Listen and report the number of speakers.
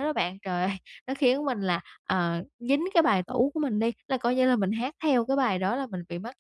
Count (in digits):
1